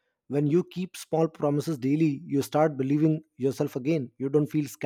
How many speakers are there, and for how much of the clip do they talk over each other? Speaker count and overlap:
1, no overlap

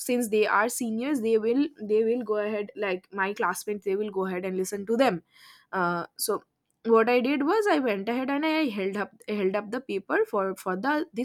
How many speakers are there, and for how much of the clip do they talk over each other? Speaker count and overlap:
1, no overlap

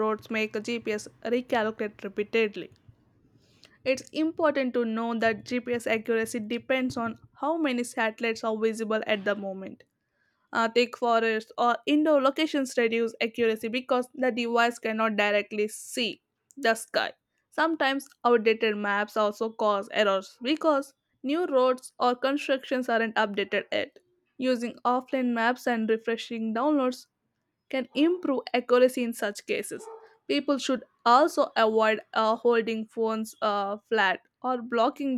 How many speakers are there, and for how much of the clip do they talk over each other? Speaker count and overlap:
1, no overlap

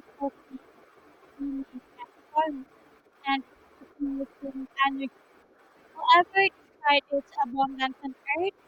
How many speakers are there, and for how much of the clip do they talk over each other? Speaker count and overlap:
1, no overlap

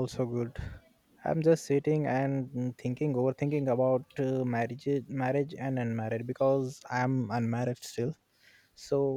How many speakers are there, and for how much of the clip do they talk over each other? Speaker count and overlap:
1, no overlap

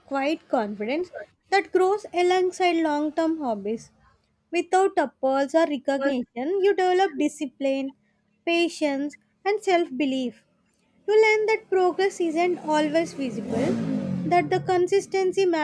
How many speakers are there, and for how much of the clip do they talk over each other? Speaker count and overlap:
1, no overlap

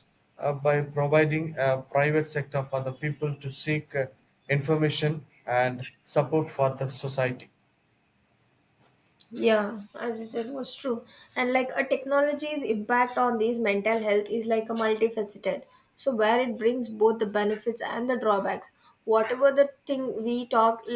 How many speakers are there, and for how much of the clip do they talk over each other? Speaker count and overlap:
2, no overlap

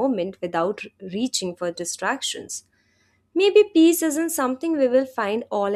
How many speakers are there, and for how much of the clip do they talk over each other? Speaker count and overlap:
1, no overlap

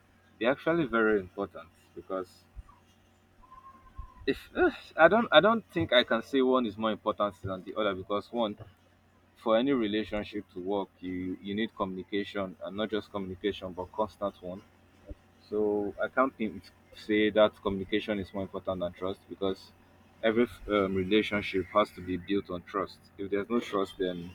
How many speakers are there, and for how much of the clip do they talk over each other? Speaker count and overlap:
1, no overlap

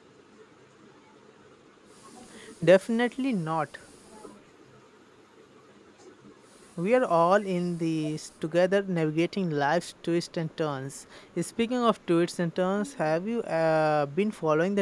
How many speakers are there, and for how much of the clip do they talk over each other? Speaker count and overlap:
1, no overlap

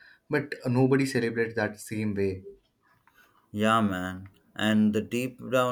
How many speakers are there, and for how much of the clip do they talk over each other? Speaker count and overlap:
2, no overlap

